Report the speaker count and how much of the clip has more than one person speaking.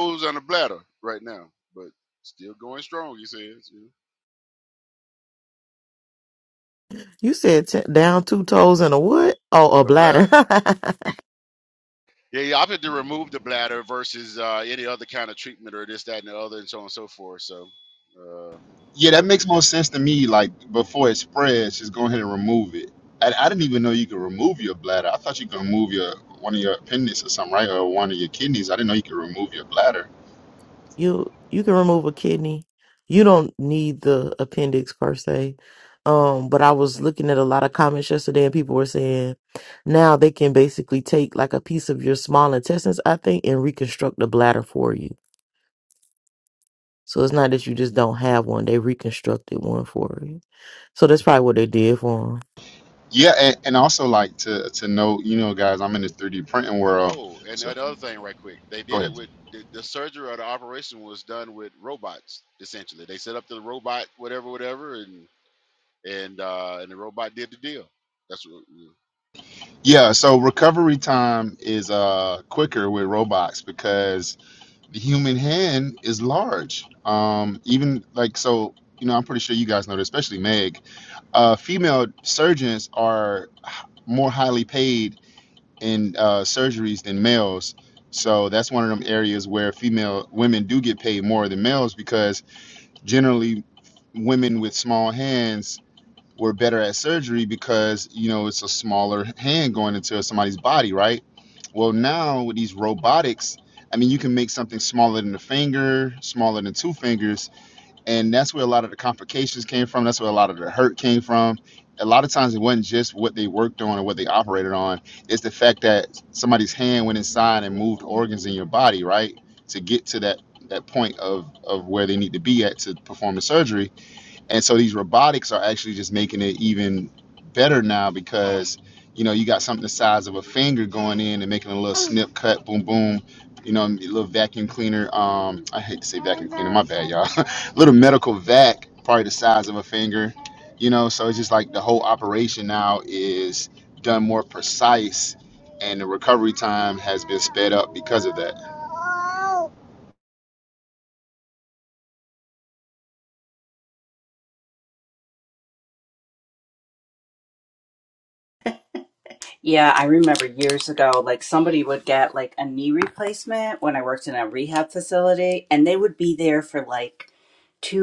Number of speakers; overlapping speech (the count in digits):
4, about 1%